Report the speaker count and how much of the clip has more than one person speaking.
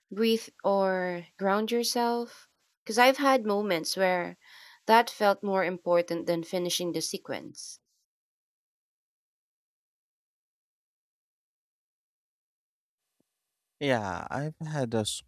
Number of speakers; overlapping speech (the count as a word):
two, no overlap